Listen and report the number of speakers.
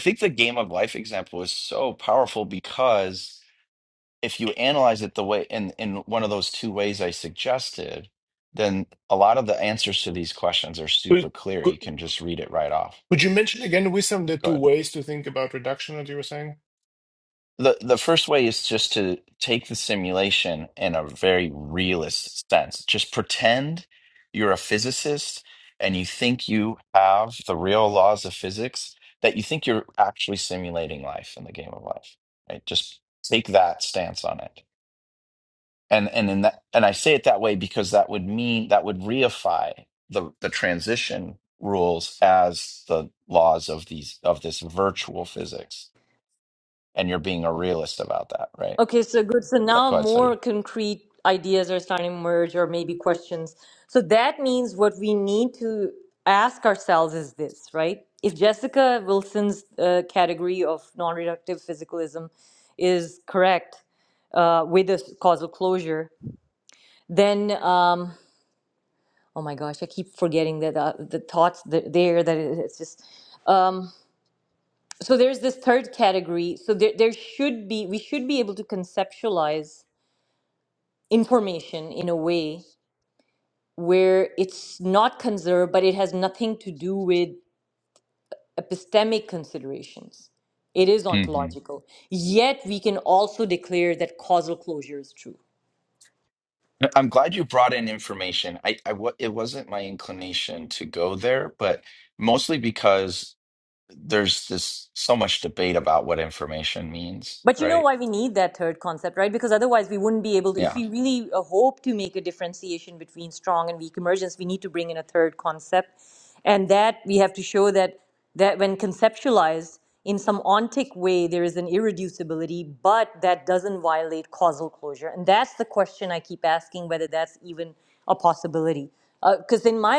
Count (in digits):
3